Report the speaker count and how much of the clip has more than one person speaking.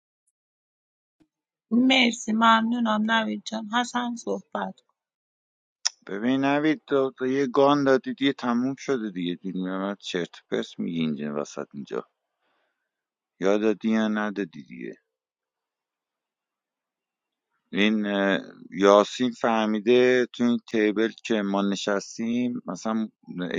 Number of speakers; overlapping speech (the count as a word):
two, no overlap